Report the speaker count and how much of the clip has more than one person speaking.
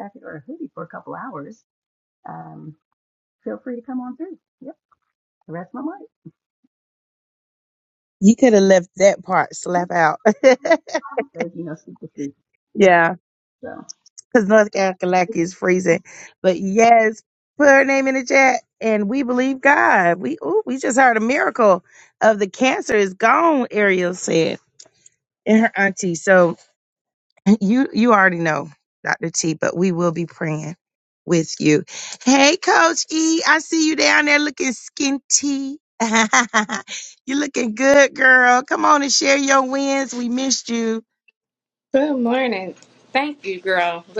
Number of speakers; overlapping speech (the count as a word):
three, no overlap